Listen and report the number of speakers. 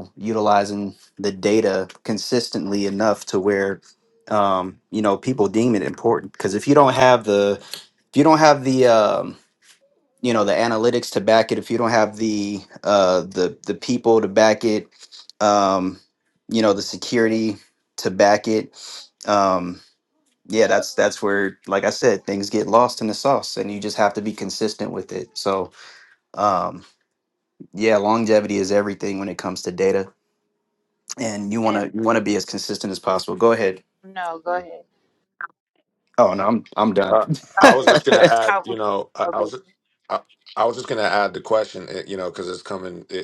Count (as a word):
three